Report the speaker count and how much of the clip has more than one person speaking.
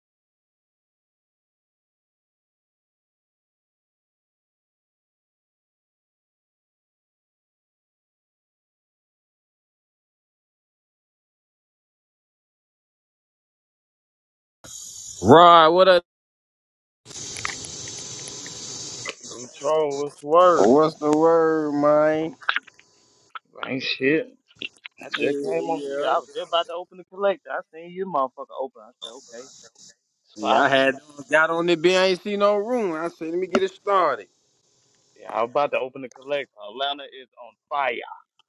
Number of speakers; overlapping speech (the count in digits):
2, about 4%